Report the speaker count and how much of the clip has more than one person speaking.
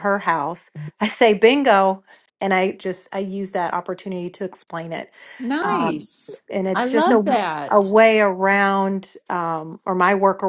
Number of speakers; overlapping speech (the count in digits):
2, about 11%